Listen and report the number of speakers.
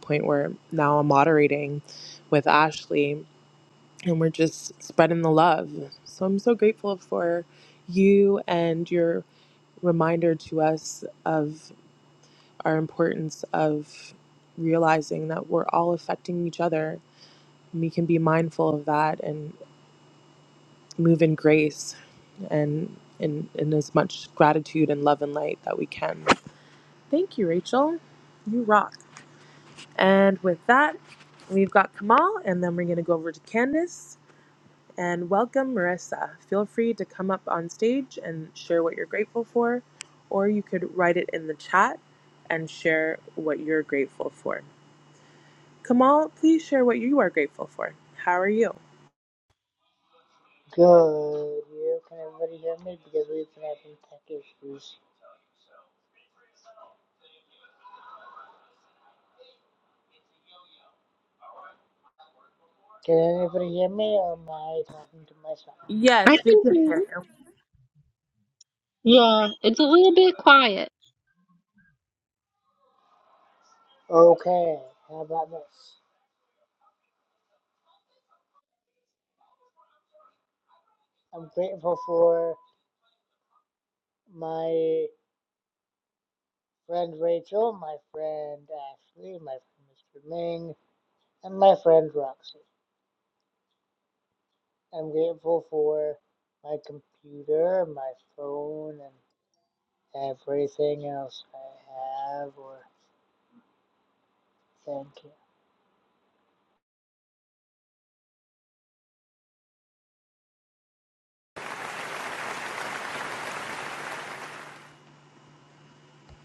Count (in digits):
3